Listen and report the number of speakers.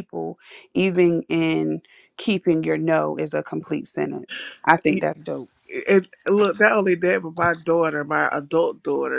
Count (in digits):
2